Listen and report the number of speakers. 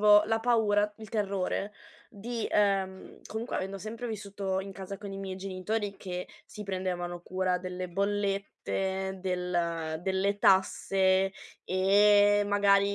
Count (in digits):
1